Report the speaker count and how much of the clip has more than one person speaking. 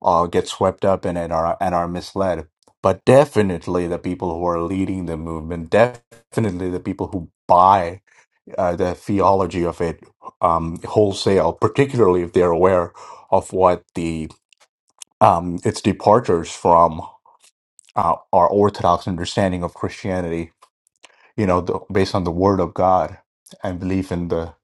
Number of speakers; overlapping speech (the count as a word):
one, no overlap